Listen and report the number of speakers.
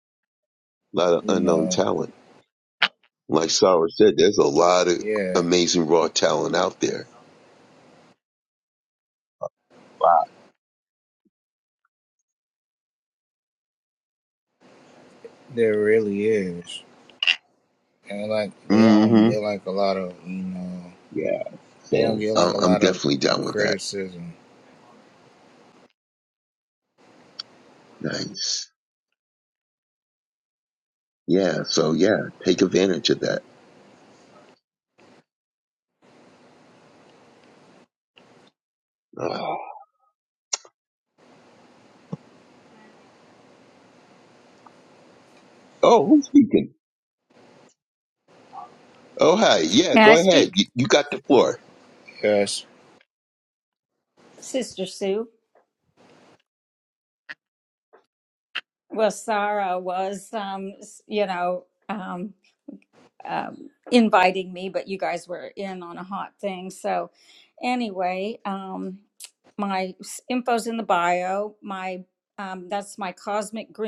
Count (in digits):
3